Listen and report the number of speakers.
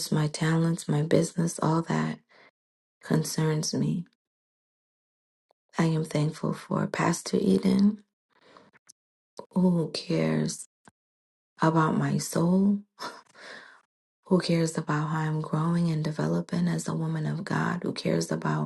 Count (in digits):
1